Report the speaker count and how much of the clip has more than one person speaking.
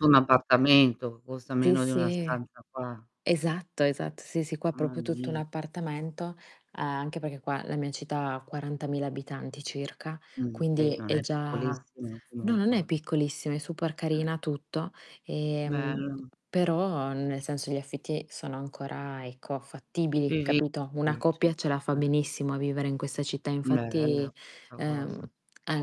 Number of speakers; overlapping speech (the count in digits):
2, about 20%